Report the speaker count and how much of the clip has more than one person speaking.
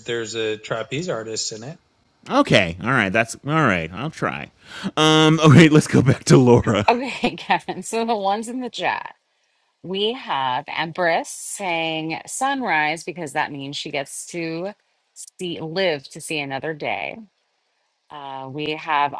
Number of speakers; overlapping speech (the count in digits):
3, under 1%